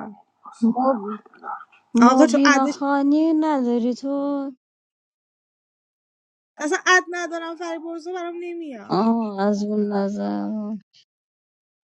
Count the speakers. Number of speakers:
2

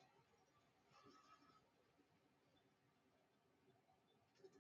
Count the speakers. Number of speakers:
0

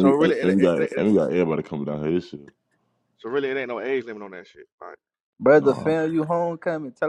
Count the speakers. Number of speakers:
3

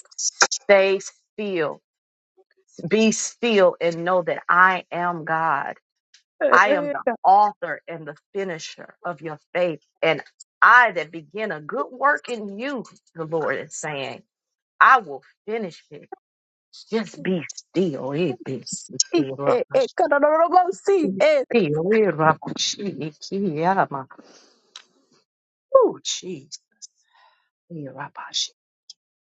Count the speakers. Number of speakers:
2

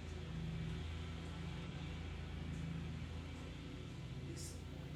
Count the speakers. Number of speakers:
0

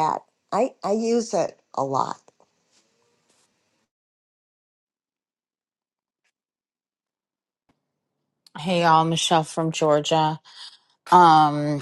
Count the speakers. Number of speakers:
2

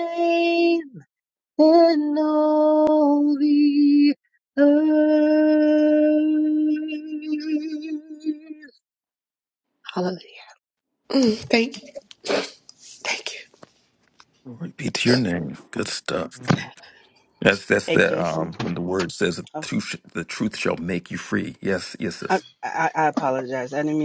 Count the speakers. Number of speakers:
4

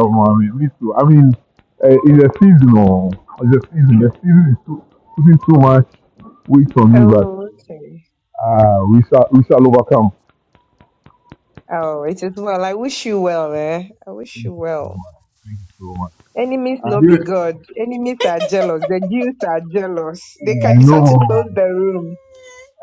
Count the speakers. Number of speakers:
2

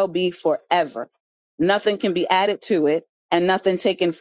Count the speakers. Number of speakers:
1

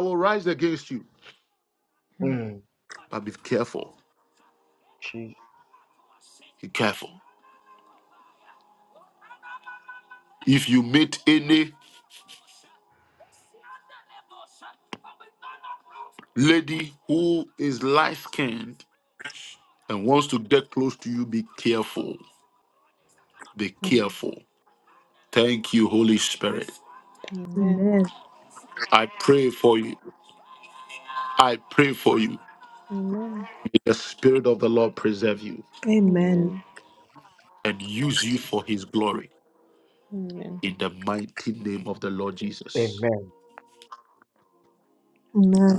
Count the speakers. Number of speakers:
4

